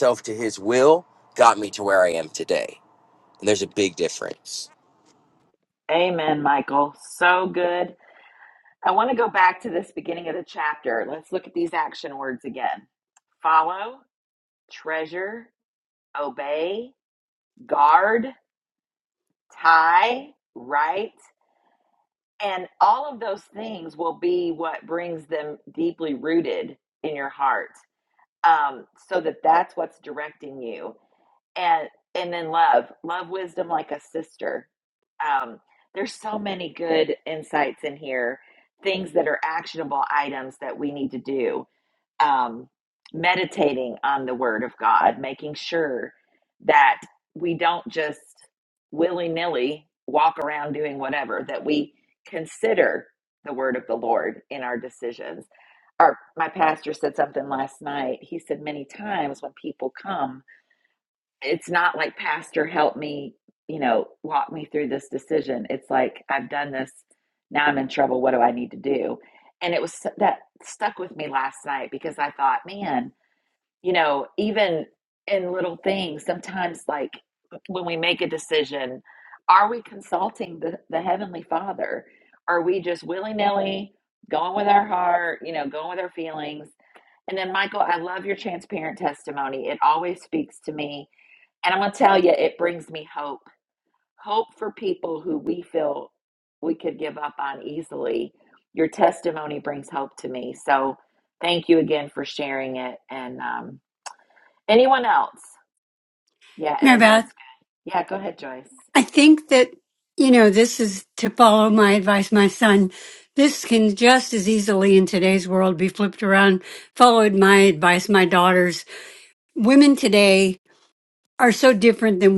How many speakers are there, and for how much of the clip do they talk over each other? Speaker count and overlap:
3, under 1%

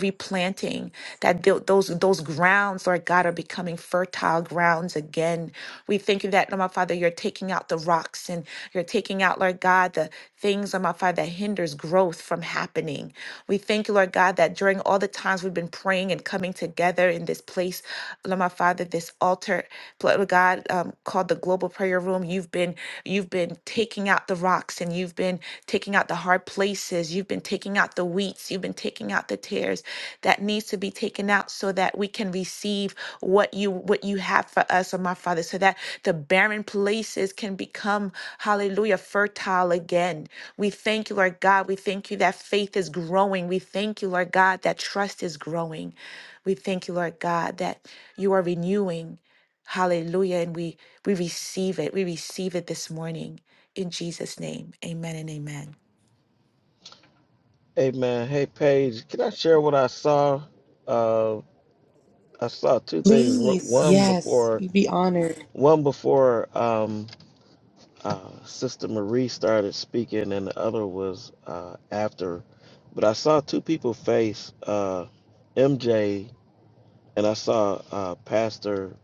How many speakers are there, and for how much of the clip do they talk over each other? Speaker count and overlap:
3, about 2%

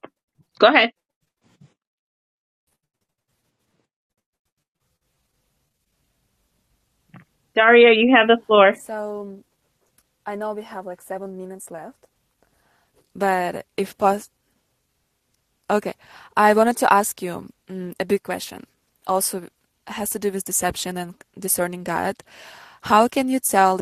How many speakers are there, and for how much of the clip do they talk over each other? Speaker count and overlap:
2, no overlap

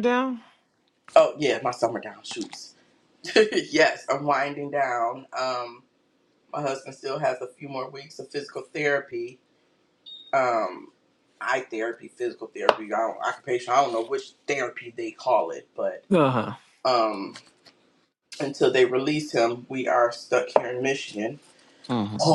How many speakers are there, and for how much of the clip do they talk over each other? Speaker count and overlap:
2, under 1%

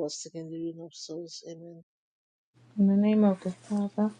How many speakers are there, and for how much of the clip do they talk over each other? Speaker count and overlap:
2, no overlap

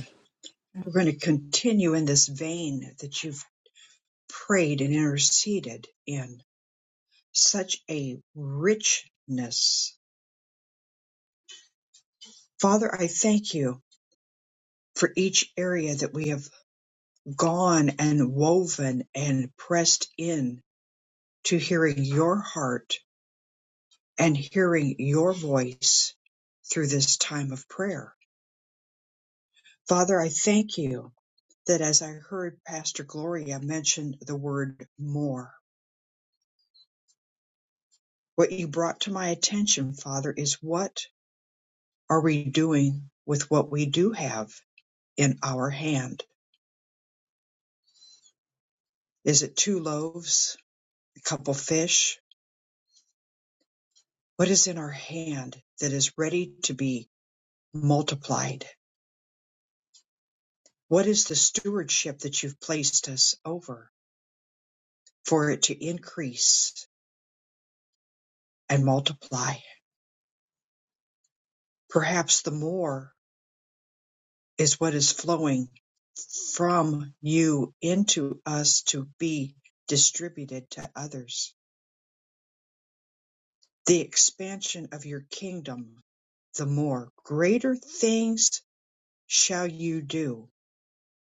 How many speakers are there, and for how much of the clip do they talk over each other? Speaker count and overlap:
1, no overlap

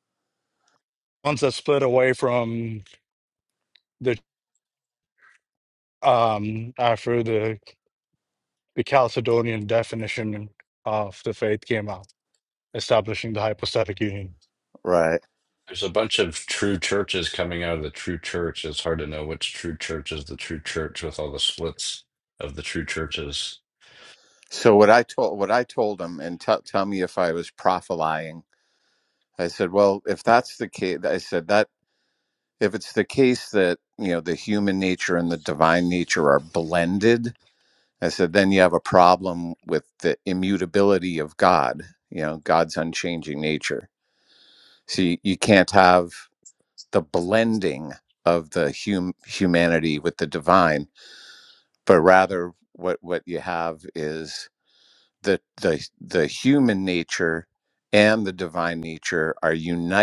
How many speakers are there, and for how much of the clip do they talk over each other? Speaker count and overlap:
3, no overlap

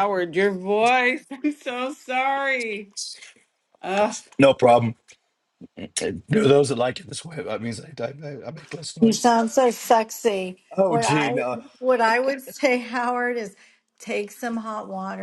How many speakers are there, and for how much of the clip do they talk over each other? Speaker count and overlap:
3, about 5%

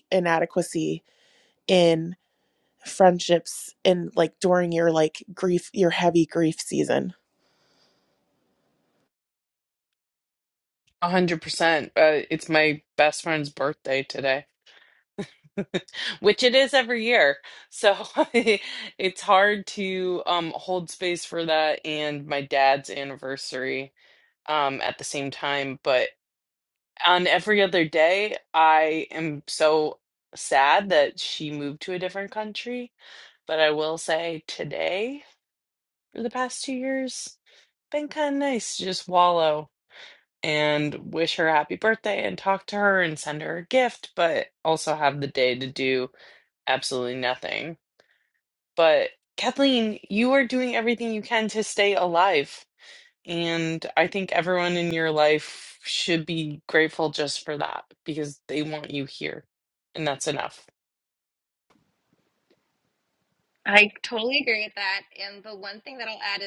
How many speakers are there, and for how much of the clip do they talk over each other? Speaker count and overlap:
3, no overlap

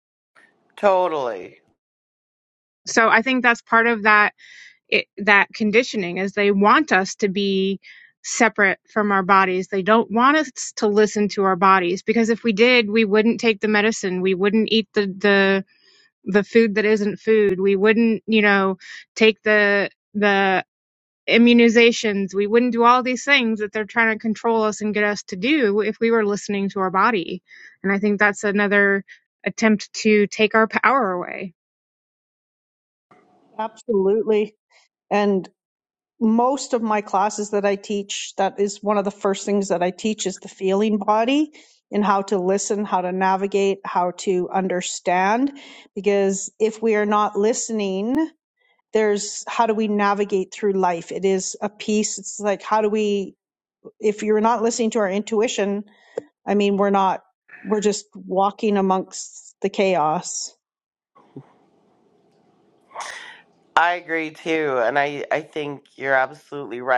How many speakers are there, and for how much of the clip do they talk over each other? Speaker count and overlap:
3, no overlap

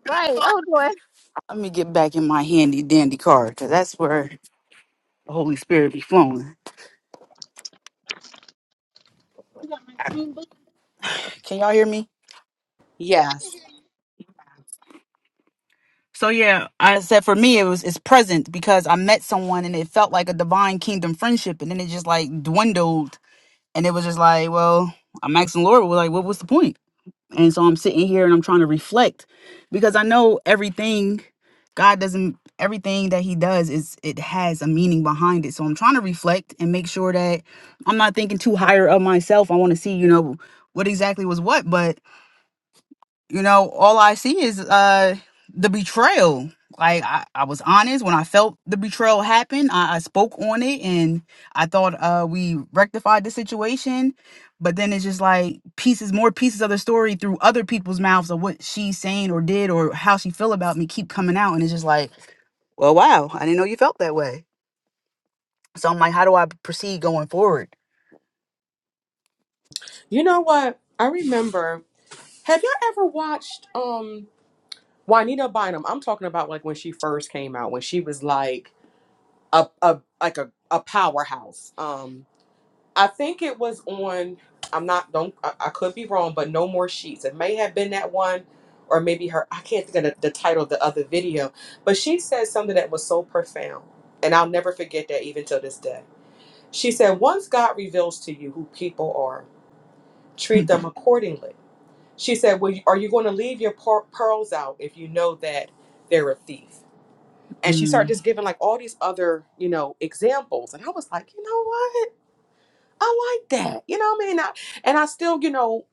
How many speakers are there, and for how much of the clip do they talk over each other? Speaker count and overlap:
3, under 1%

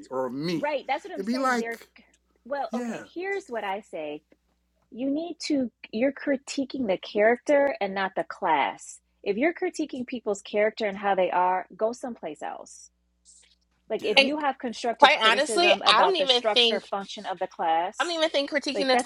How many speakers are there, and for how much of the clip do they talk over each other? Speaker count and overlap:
3, about 18%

